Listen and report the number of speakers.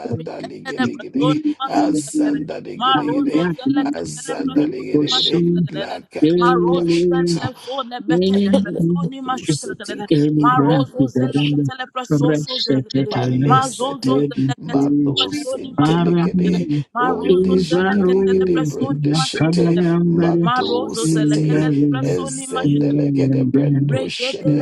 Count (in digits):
3